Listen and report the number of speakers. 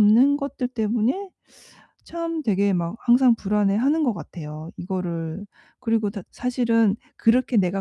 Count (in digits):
1